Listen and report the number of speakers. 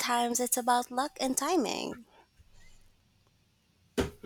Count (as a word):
one